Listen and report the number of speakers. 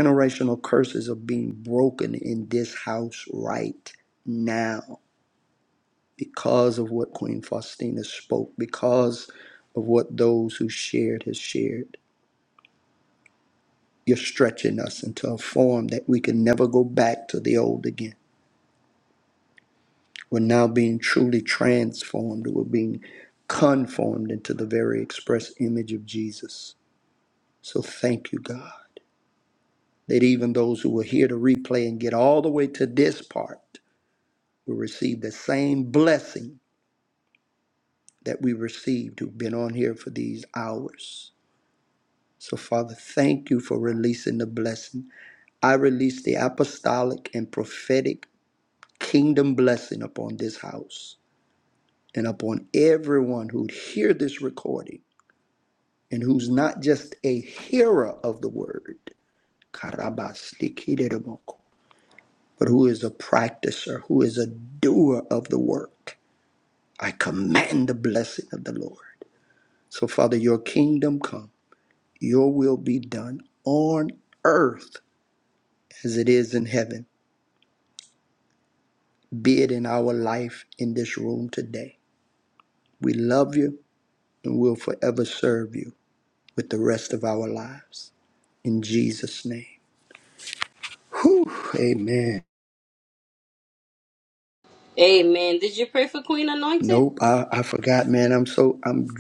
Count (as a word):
two